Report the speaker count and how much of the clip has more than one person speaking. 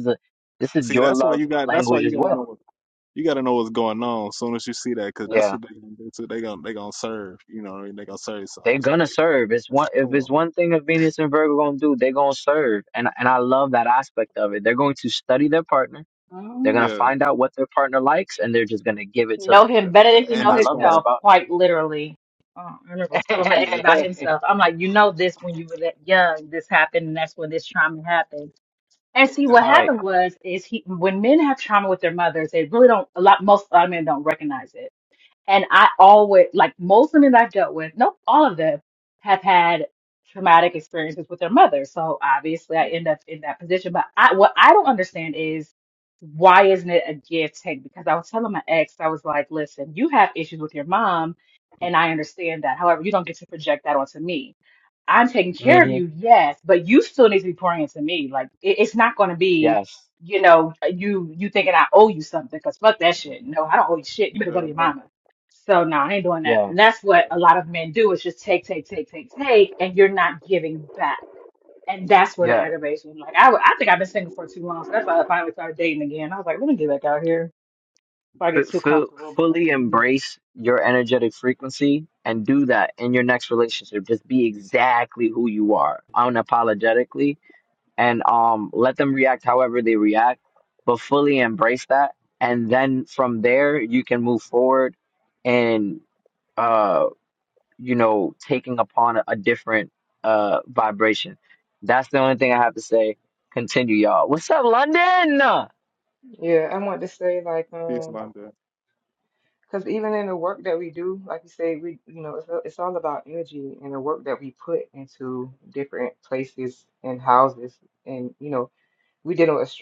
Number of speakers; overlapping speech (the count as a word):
four, about 8%